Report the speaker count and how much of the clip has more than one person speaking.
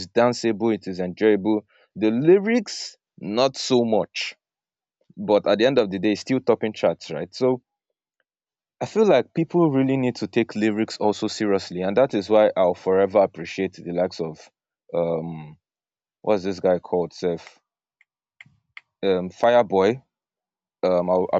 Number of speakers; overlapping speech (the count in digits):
1, no overlap